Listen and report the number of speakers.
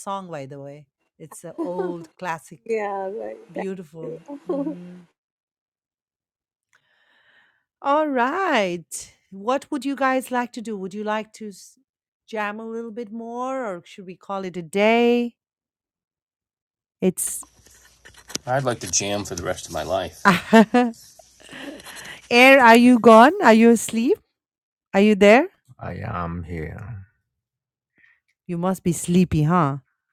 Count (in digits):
4